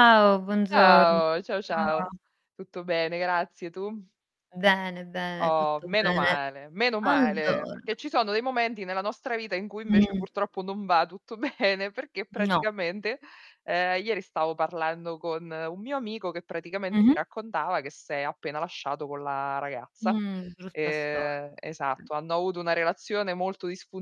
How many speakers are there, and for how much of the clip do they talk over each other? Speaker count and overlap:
2, about 18%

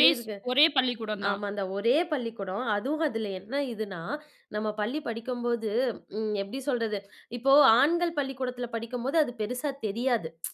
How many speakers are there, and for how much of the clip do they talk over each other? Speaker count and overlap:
2, about 5%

